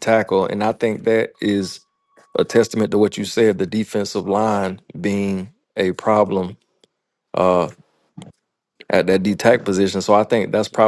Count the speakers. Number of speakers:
one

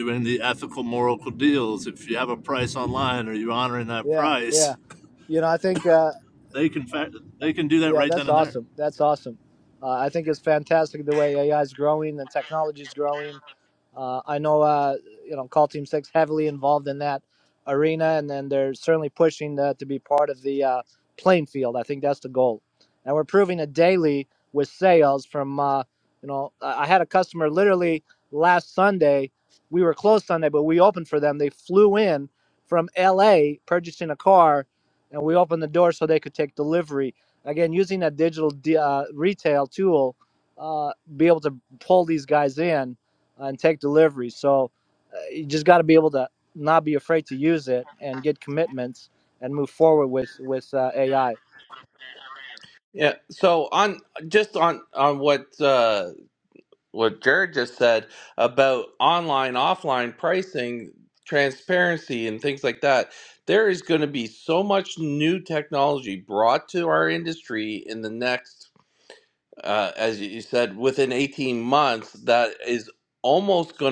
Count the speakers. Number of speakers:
three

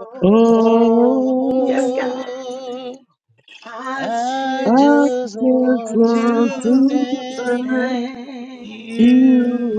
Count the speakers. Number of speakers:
three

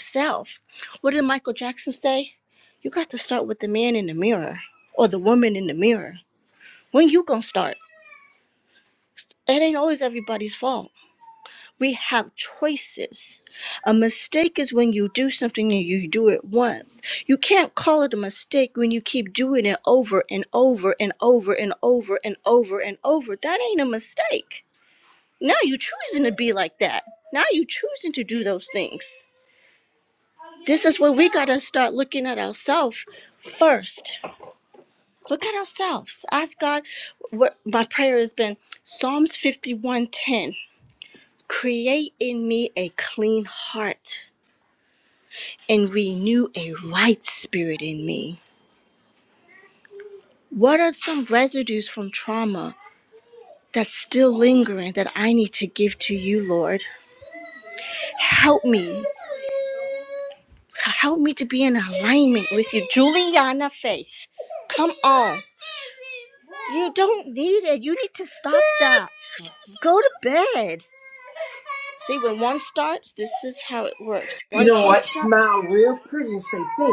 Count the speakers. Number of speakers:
two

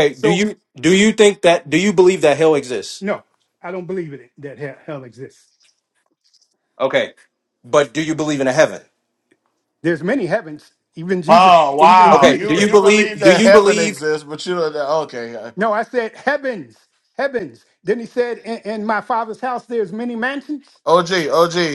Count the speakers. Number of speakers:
three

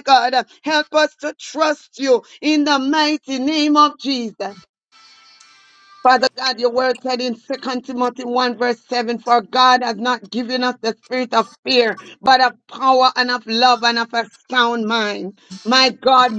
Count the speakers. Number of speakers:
one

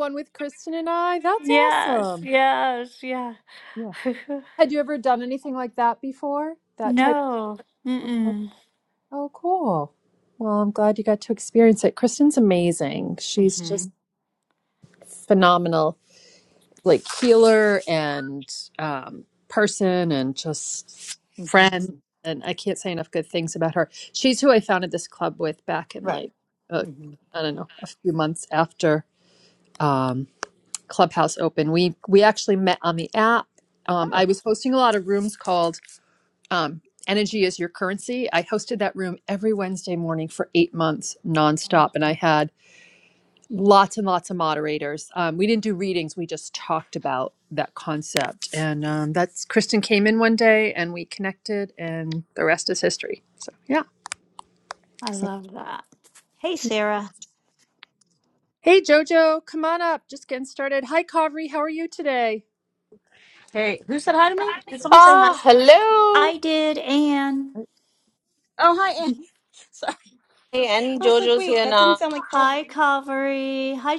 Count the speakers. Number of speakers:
four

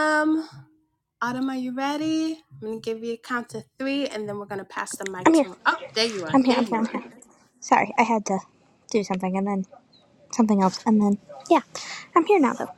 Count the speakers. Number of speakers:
two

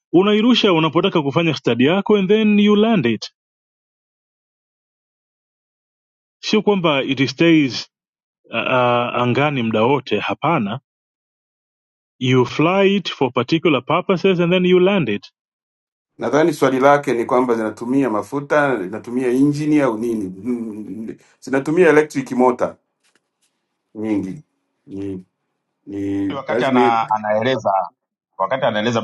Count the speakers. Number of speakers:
three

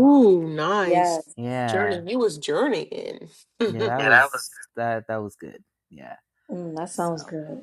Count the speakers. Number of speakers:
three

